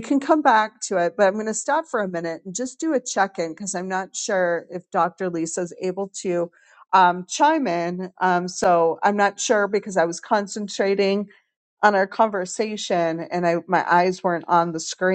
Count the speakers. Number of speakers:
1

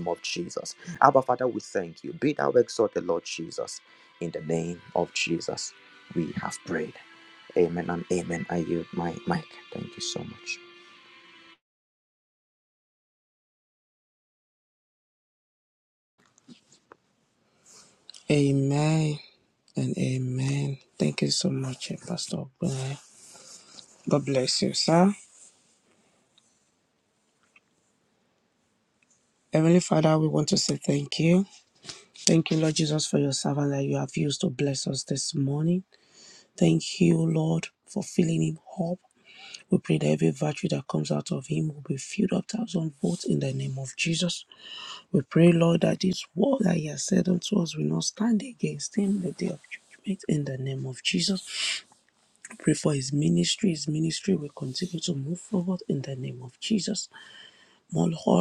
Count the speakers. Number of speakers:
2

